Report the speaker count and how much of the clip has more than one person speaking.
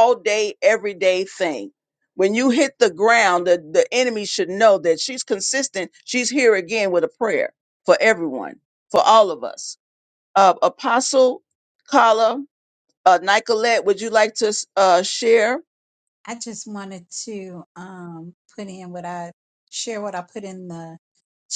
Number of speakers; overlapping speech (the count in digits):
2, no overlap